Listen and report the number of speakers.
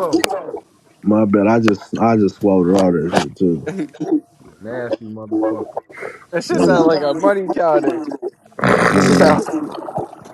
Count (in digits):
3